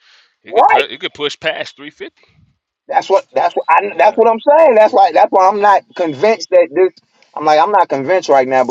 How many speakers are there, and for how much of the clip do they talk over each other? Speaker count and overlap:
2, about 8%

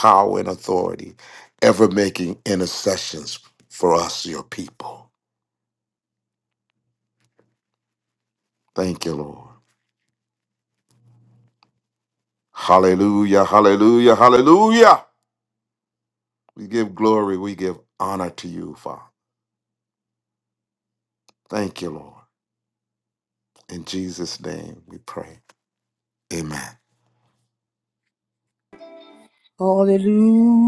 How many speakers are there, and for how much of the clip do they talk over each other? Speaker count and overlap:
2, no overlap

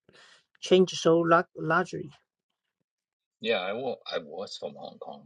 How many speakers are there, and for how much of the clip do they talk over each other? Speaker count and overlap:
2, no overlap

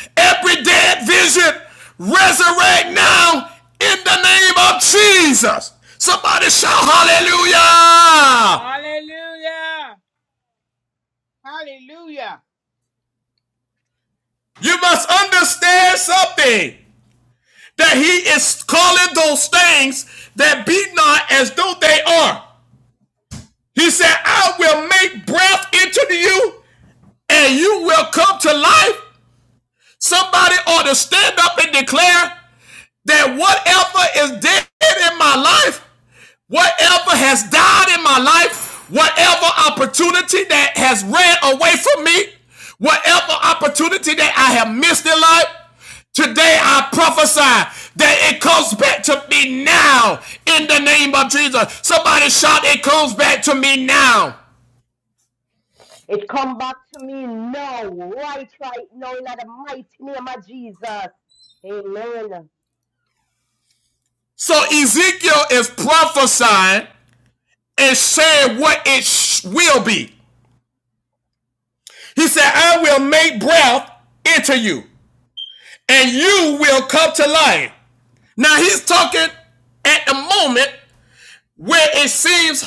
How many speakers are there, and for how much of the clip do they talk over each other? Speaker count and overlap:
3, no overlap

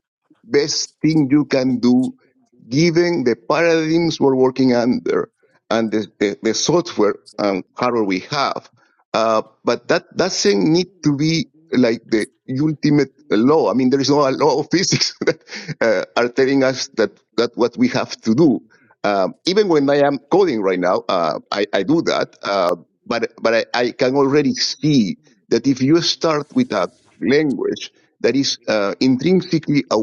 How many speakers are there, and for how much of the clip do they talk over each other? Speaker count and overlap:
1, no overlap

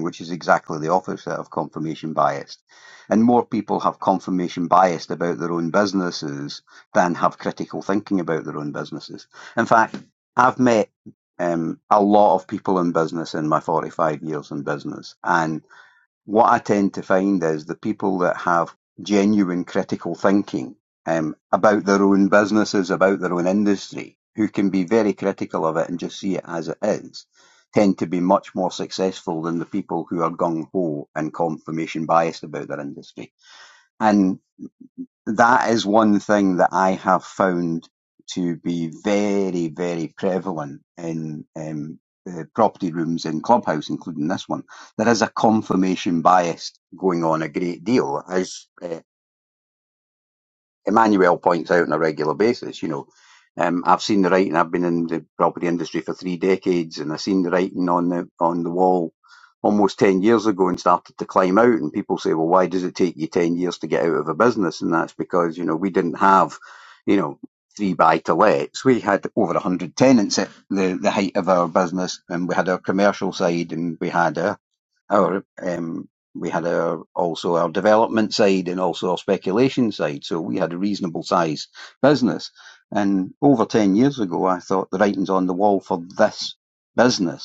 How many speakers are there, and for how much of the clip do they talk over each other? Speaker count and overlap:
1, no overlap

